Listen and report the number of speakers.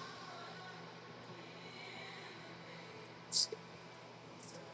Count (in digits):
0